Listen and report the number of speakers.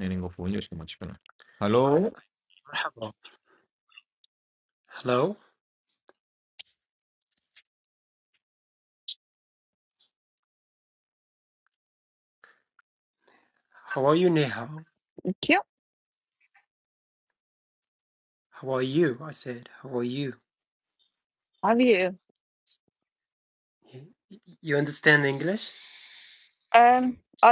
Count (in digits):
3